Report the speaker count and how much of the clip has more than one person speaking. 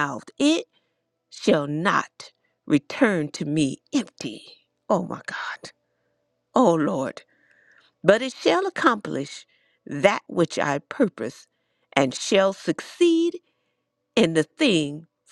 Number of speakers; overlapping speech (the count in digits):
1, no overlap